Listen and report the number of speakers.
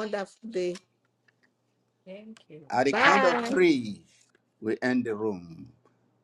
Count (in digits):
2